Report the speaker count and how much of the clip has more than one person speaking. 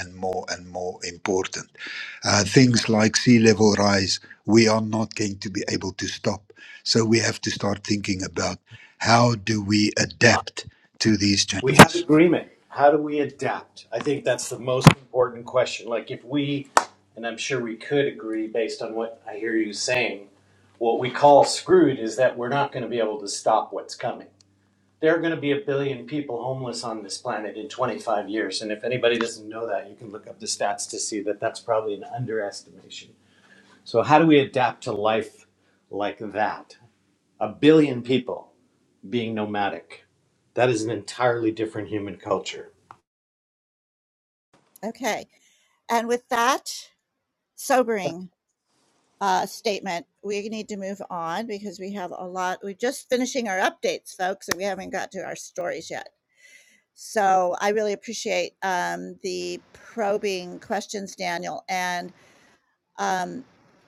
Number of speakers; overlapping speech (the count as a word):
three, about 1%